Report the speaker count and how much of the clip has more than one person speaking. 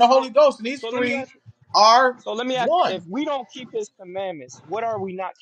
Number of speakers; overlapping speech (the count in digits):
2, about 20%